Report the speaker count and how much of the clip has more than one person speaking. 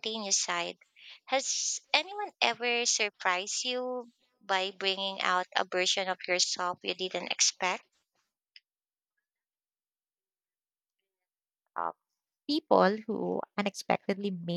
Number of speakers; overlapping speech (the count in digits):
2, no overlap